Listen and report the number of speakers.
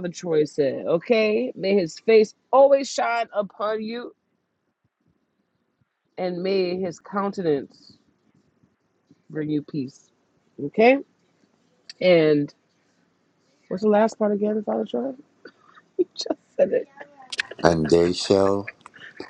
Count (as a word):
two